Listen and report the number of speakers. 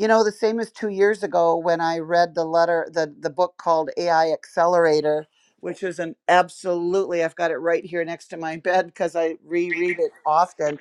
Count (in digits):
1